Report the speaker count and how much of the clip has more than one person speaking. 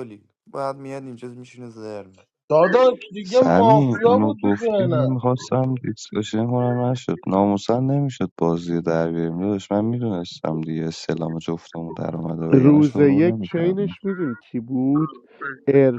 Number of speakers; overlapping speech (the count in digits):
4, about 20%